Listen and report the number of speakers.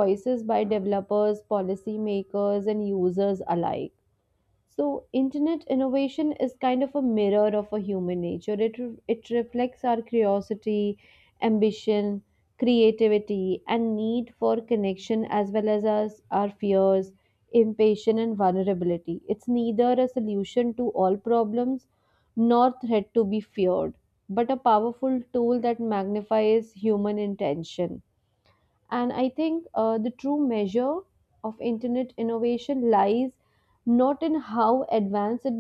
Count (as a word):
one